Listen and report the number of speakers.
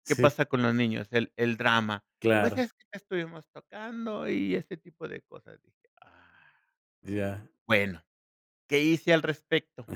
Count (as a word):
two